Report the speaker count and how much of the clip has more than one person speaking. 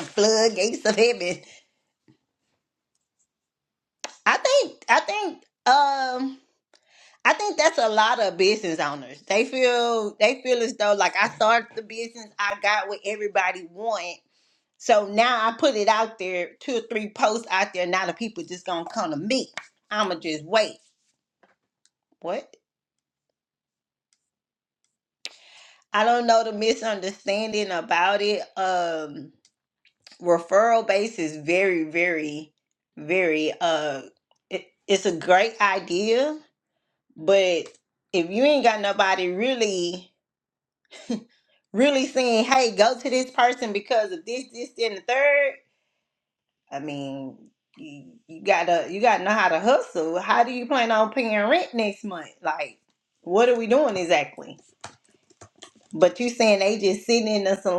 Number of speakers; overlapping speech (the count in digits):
1, no overlap